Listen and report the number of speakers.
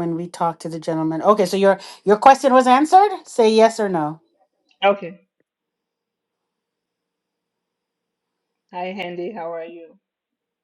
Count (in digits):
2